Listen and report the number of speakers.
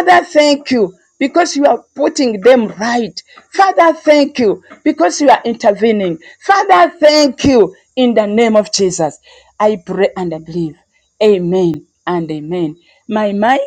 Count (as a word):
one